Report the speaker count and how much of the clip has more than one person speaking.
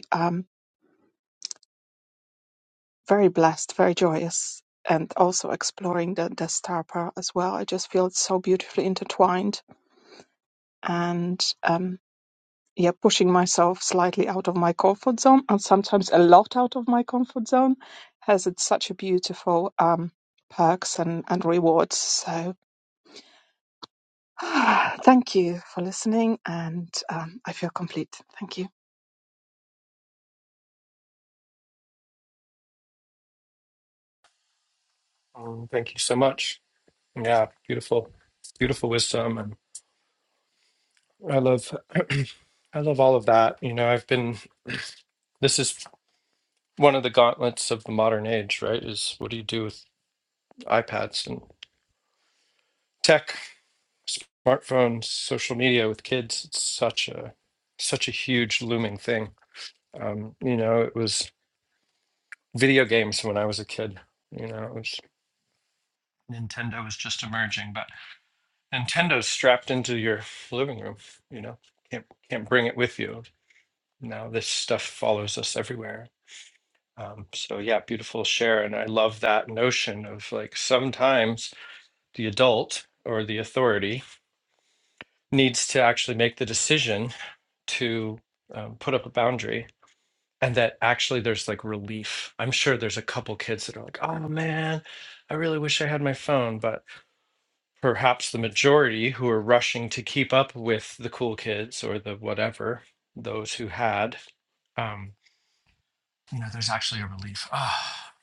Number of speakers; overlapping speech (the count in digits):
2, no overlap